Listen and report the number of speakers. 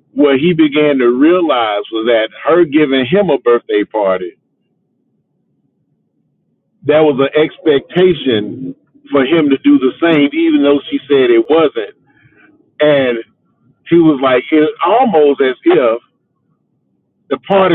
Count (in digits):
1